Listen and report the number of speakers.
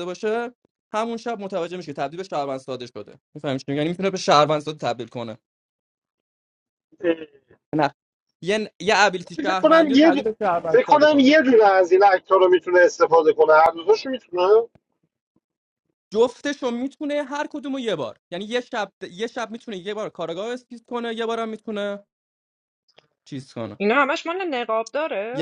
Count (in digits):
3